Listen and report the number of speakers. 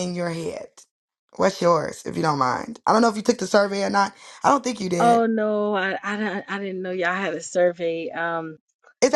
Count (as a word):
two